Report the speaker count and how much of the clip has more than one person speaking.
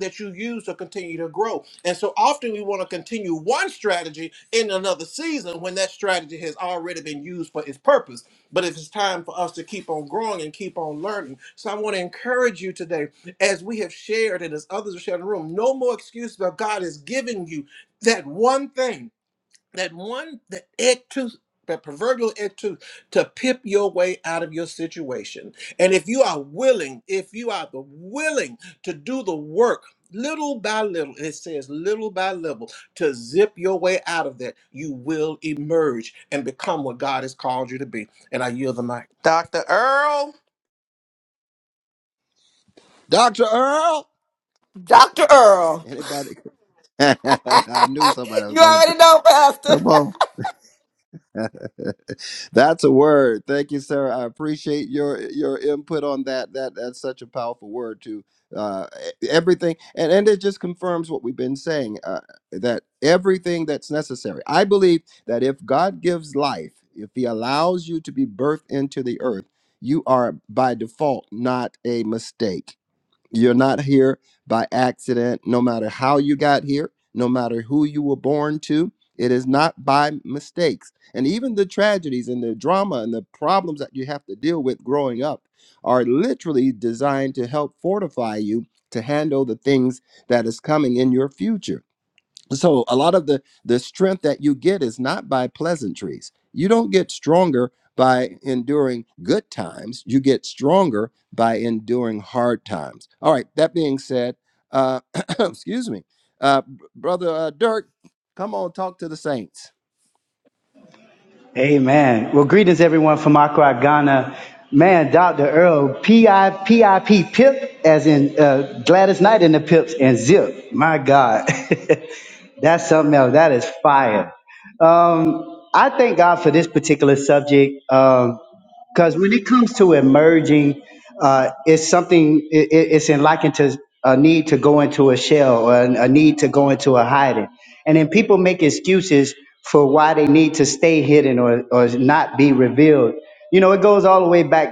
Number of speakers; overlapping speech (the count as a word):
five, under 1%